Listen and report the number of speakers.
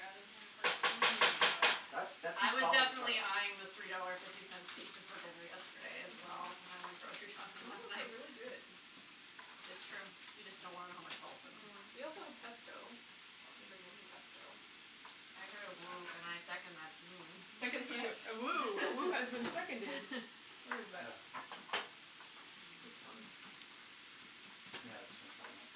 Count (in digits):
4